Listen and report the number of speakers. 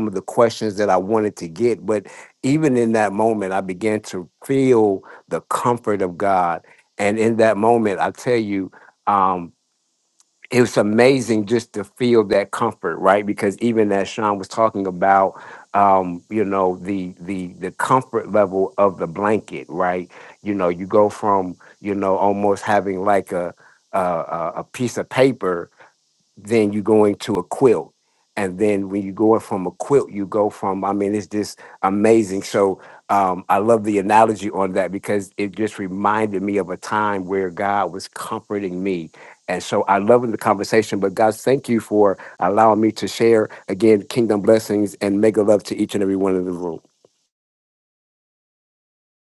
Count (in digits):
1